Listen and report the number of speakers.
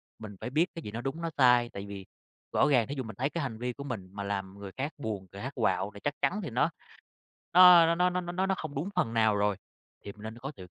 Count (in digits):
1